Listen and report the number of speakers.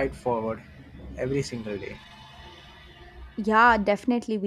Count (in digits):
2